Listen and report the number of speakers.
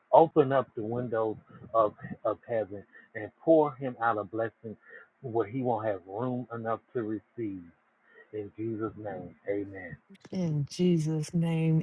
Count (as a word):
two